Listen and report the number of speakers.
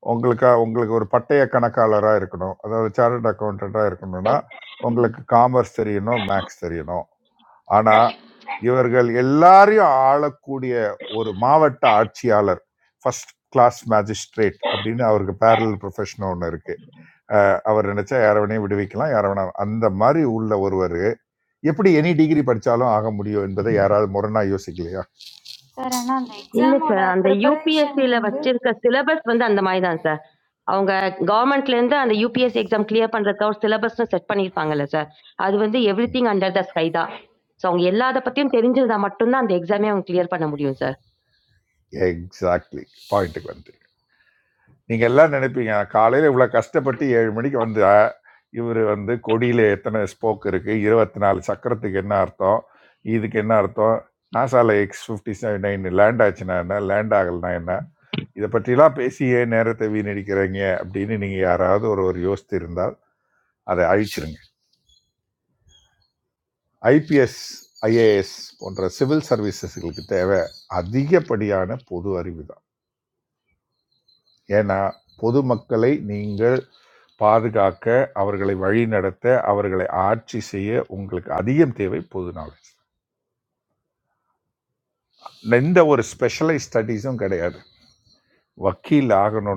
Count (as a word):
three